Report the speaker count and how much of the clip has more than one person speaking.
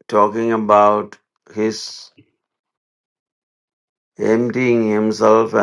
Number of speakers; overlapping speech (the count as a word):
one, no overlap